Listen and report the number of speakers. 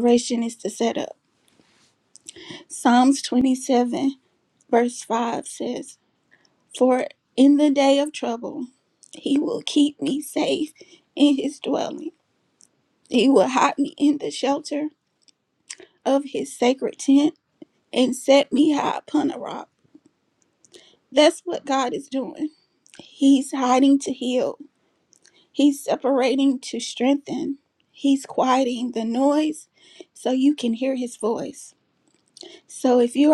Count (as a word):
one